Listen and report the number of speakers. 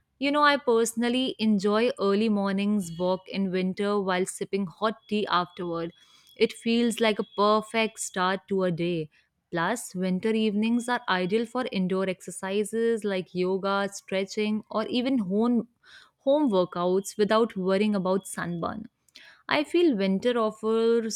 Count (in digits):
1